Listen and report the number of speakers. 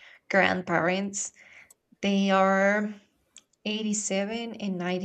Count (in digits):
1